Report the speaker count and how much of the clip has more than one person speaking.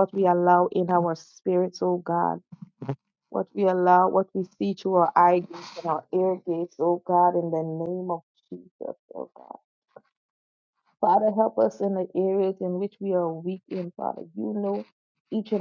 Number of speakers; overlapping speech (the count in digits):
1, no overlap